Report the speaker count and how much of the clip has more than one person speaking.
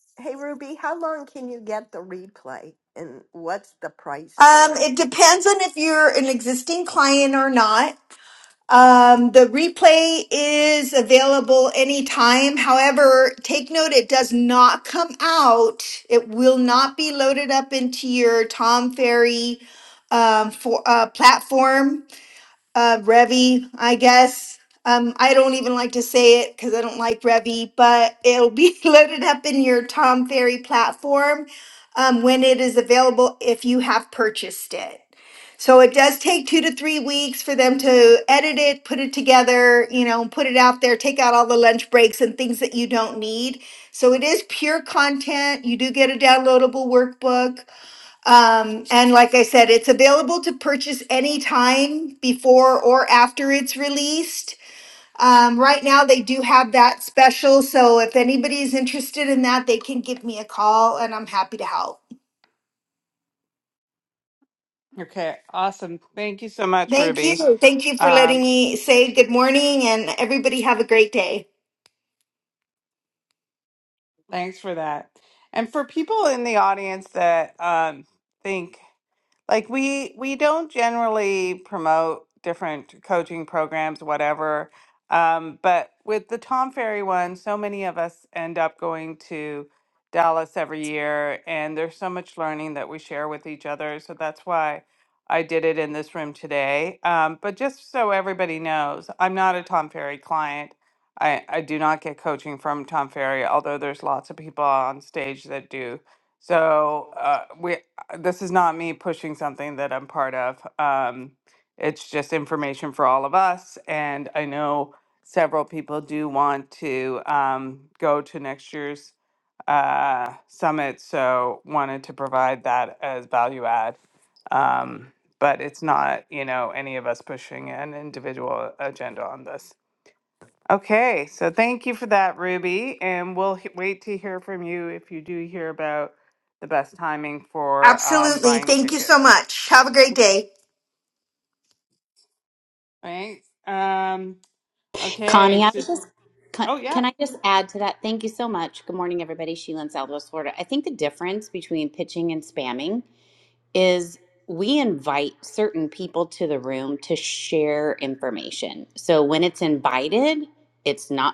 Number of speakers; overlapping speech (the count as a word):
four, about 2%